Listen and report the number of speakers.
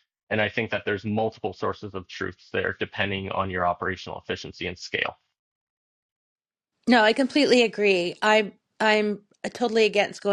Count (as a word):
two